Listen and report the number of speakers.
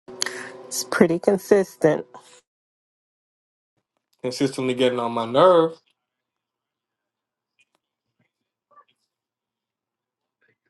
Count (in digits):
2